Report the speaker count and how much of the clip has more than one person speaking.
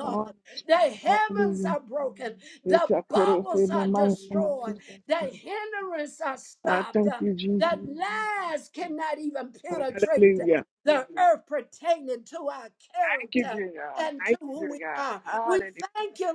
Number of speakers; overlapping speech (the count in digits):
2, about 42%